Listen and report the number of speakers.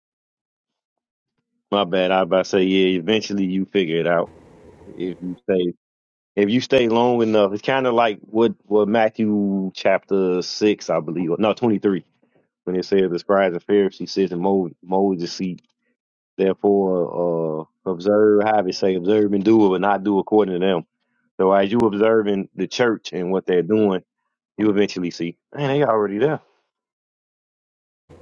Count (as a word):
one